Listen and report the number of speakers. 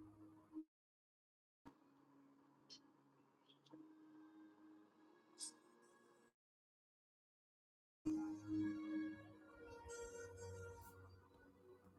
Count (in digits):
0